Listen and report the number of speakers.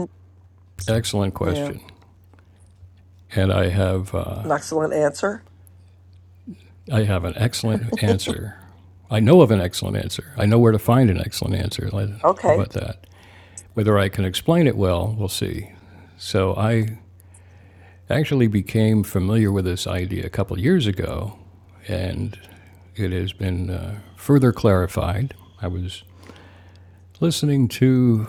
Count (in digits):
2